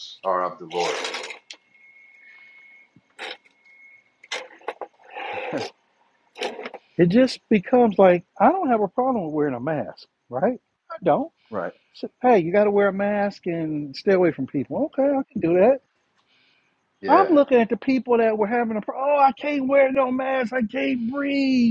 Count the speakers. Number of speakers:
2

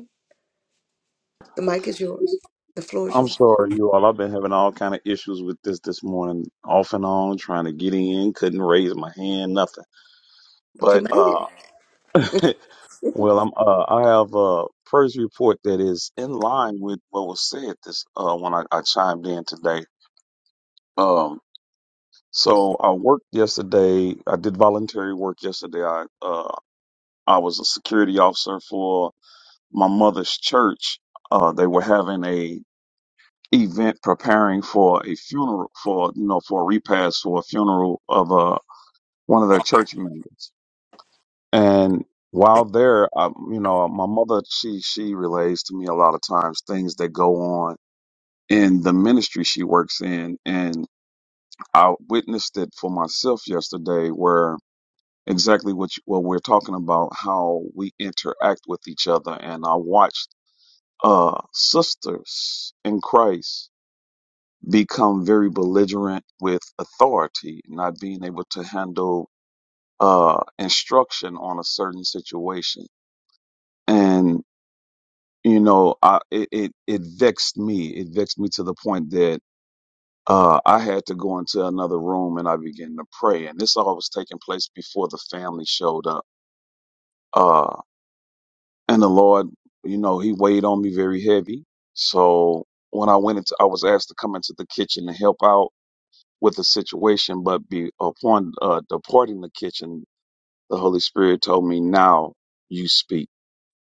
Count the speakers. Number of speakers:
2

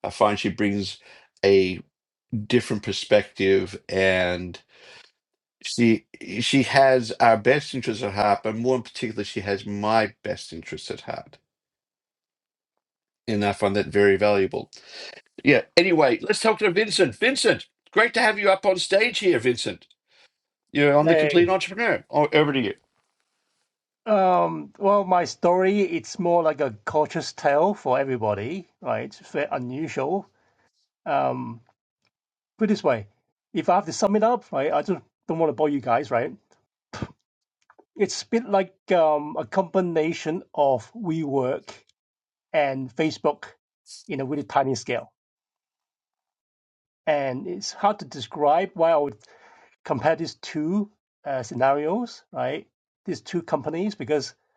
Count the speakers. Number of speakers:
2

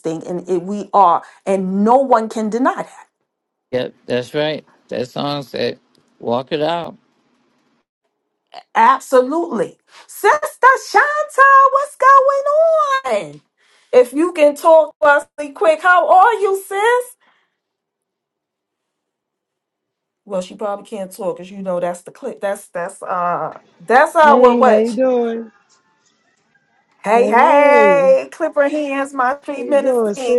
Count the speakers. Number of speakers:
3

